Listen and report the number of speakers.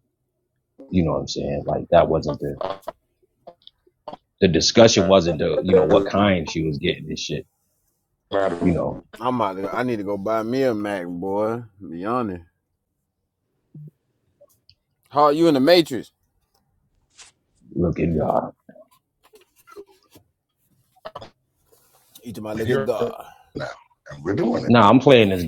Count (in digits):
3